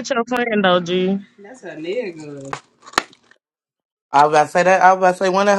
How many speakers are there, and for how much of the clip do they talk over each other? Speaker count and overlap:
3, no overlap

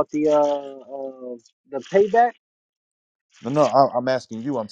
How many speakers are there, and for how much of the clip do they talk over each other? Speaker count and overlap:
2, no overlap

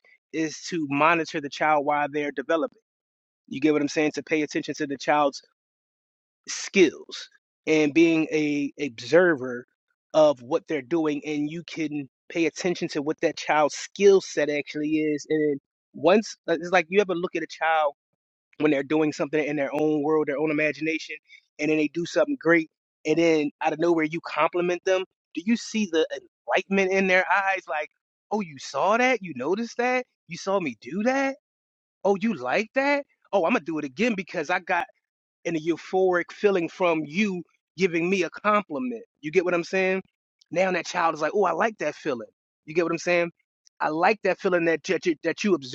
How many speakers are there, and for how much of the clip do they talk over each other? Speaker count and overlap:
1, no overlap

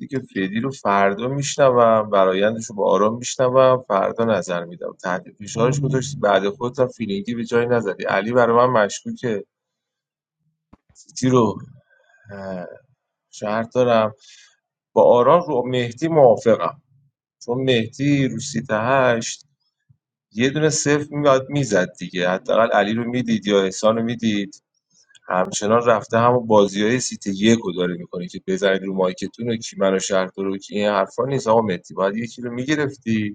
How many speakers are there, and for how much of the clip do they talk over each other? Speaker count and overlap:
1, no overlap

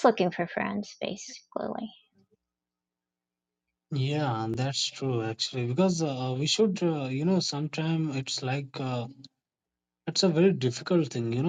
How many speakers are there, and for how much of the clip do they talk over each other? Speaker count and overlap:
2, no overlap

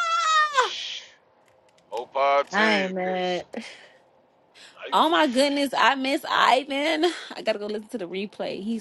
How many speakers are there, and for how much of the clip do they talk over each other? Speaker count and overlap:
3, about 11%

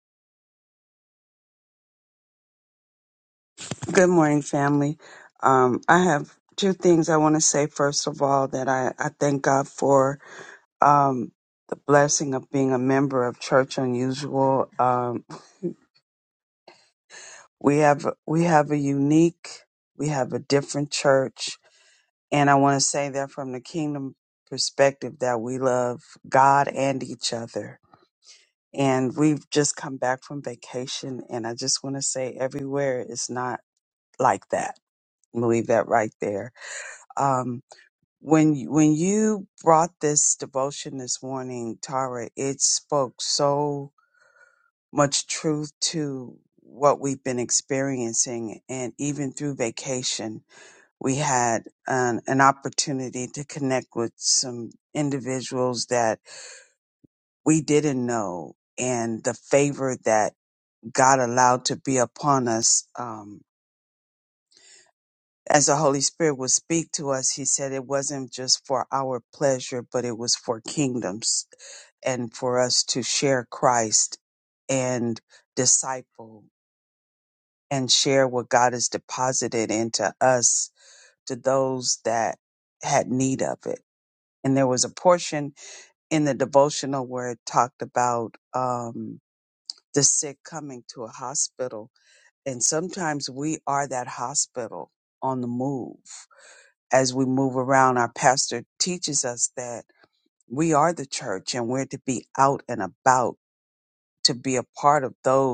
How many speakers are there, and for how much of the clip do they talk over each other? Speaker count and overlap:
1, no overlap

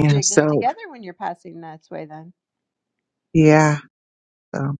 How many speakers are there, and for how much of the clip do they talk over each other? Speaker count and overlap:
2, about 13%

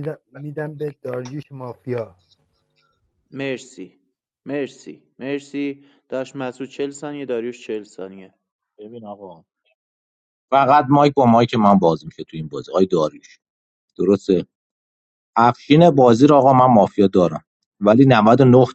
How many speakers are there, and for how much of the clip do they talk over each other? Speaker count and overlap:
3, no overlap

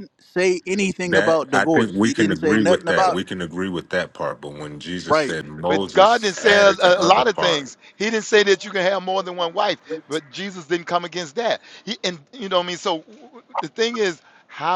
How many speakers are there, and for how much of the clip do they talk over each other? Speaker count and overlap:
3, about 30%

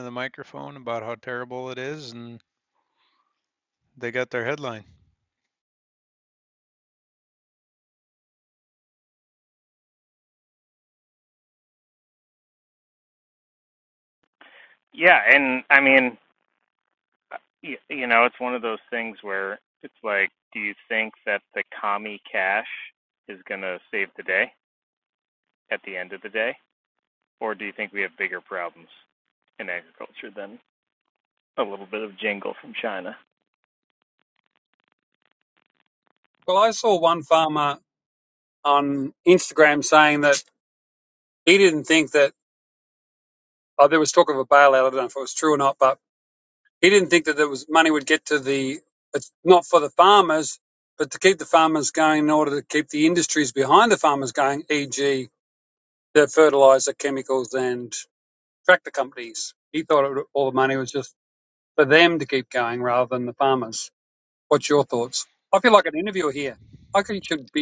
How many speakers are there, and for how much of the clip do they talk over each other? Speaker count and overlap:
3, no overlap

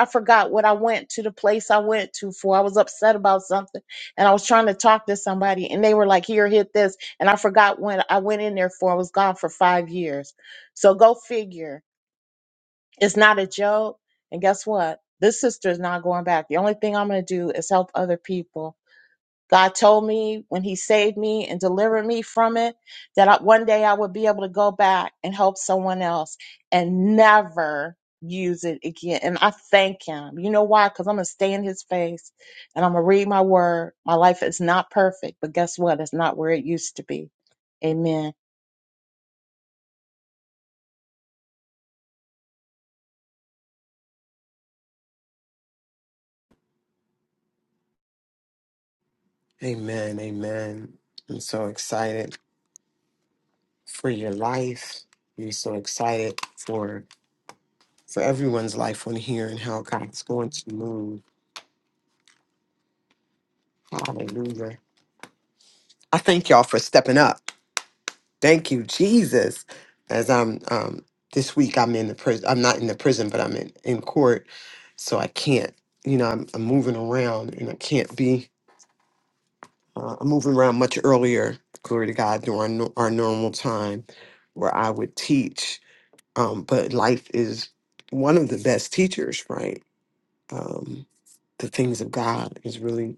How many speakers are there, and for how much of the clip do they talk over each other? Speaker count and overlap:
2, no overlap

